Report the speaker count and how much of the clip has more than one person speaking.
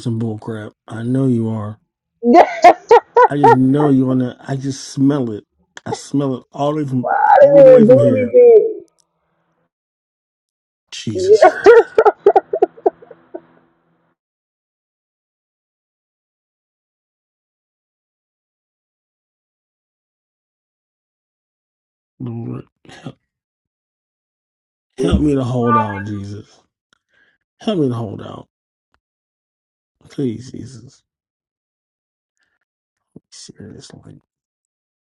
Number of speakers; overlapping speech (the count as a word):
two, about 4%